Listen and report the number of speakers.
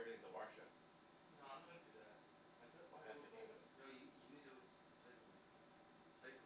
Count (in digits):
3